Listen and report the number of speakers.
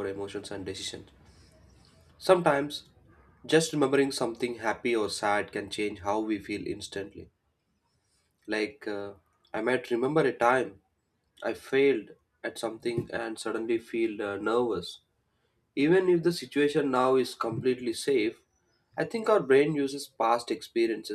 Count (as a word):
one